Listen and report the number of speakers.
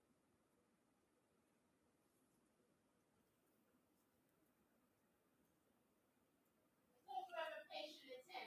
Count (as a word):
zero